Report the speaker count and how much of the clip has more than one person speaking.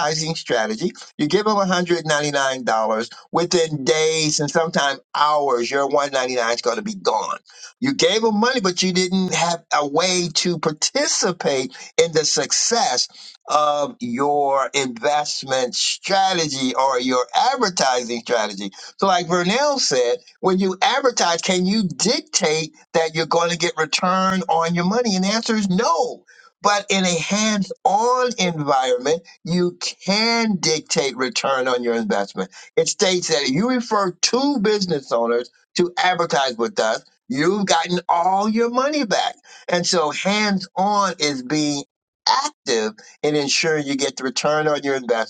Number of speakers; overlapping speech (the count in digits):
1, no overlap